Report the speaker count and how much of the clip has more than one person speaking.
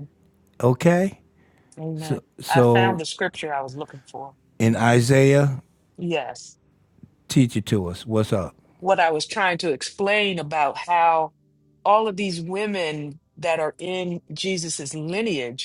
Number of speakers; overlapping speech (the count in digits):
2, about 8%